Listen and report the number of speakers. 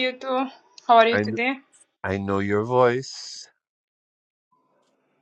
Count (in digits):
2